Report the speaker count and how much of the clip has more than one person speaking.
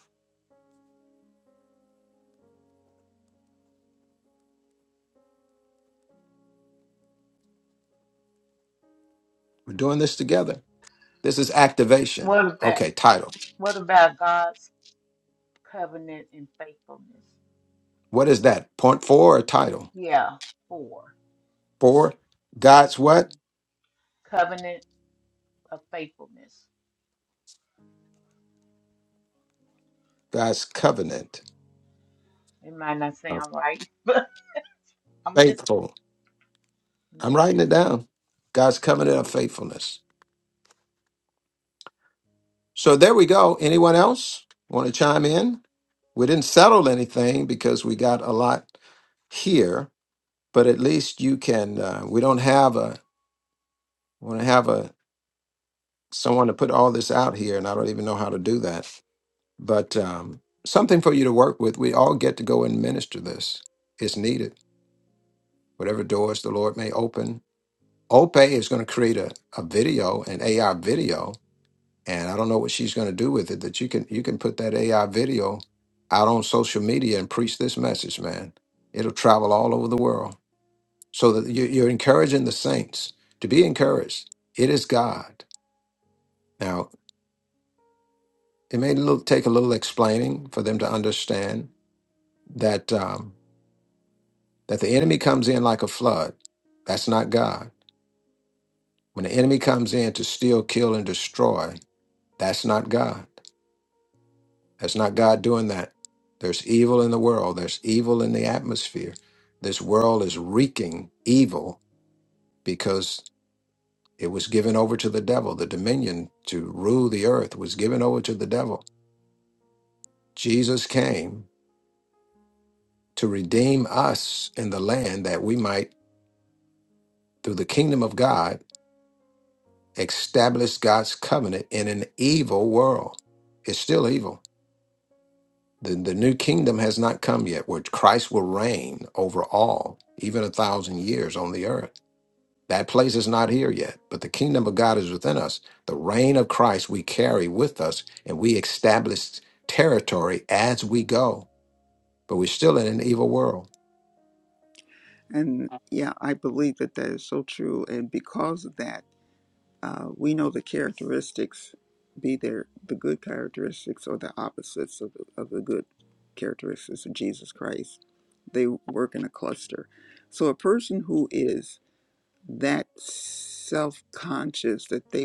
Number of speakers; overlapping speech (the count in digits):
3, under 1%